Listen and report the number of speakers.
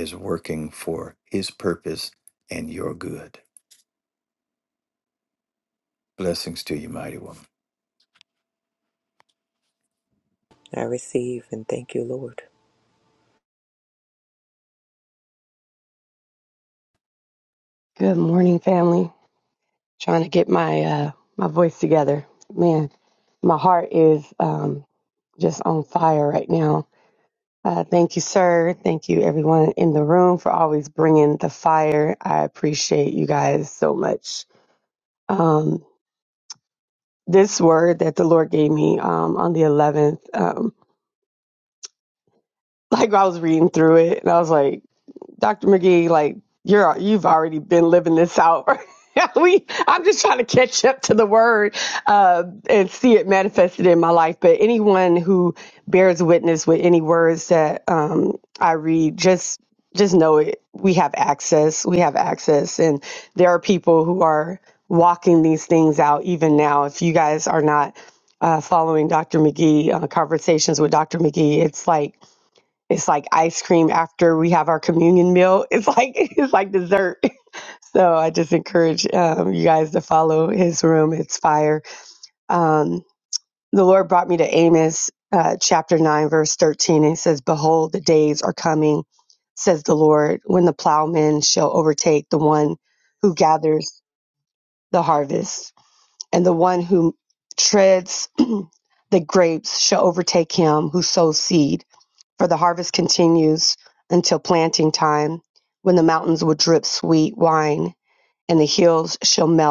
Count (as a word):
three